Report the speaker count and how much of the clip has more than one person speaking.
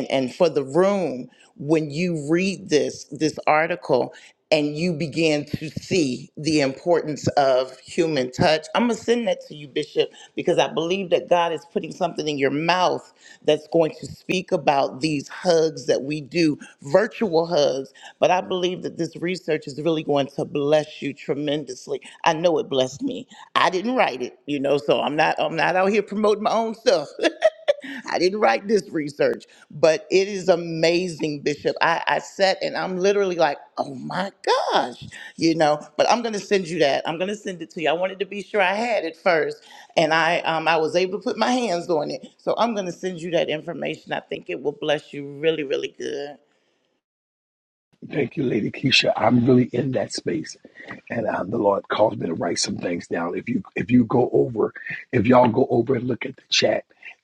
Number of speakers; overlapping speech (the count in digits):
2, no overlap